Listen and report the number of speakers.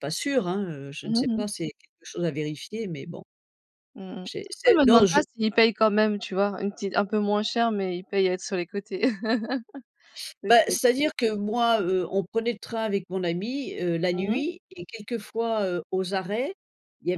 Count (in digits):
2